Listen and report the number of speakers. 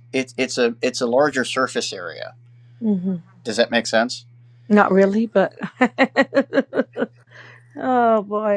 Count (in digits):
2